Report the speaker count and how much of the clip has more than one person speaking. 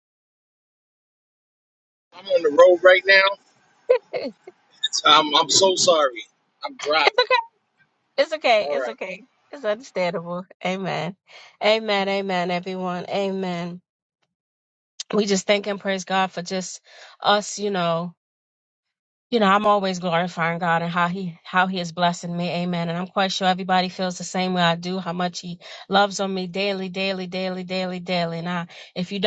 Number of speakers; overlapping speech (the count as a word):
two, about 1%